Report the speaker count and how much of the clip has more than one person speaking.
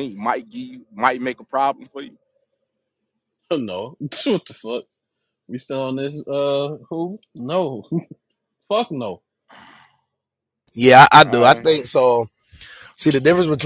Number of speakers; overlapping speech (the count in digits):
3, about 3%